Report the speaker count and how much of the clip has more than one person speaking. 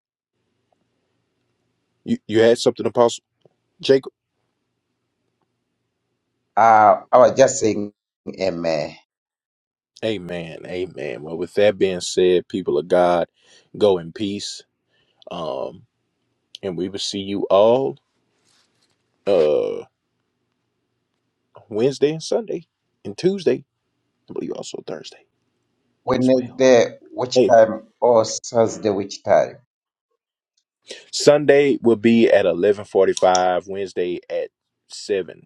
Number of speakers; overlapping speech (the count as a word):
two, about 1%